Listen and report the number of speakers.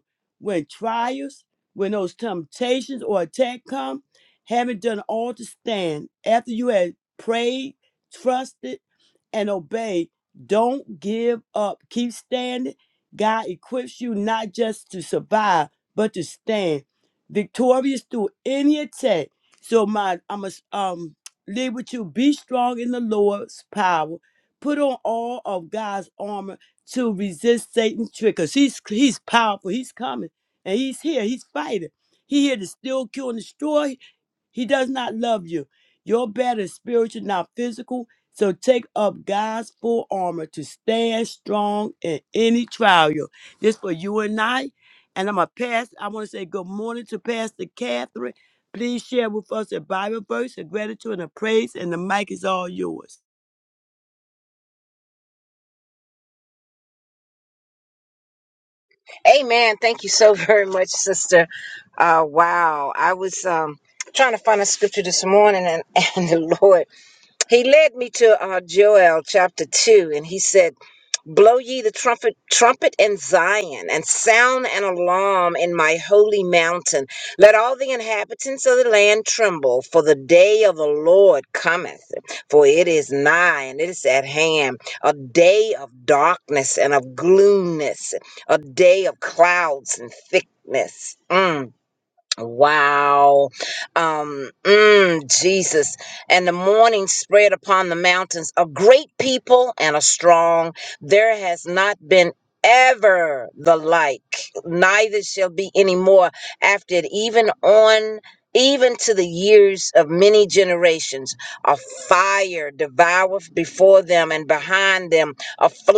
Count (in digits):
2